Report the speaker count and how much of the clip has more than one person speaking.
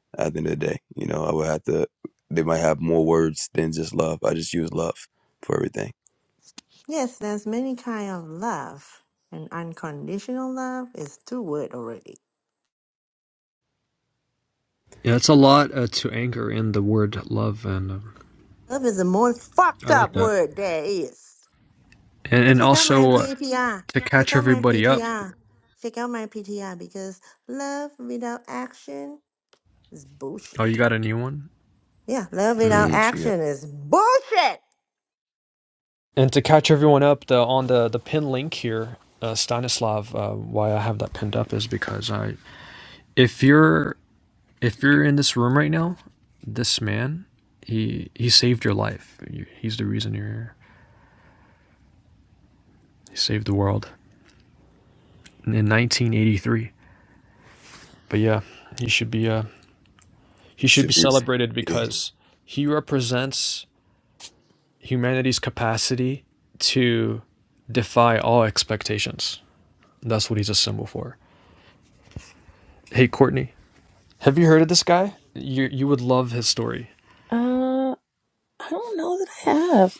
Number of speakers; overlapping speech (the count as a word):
four, about 5%